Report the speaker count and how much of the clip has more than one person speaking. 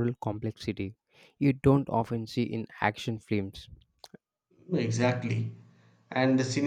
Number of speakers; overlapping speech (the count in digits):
2, no overlap